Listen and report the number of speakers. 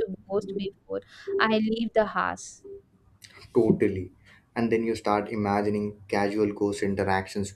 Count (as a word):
two